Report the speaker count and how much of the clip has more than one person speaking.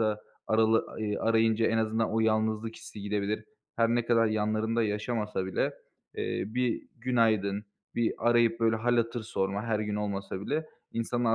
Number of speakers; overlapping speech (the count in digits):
1, no overlap